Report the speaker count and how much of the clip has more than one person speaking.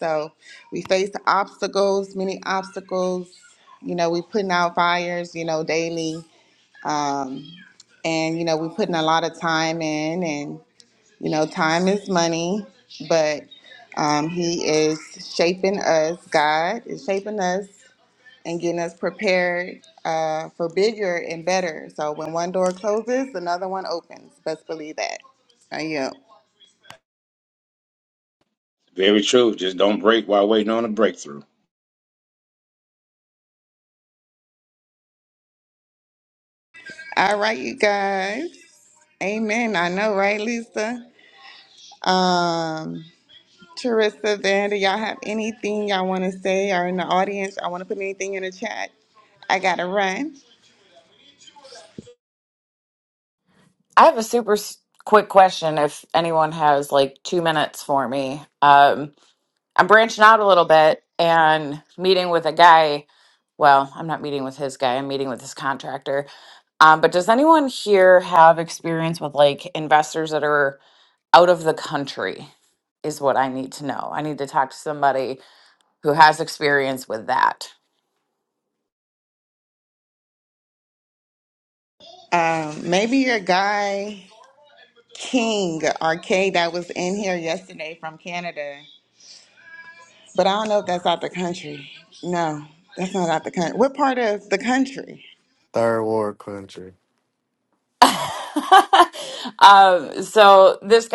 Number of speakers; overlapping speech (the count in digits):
4, no overlap